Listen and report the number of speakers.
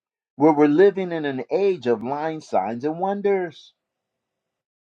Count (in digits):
1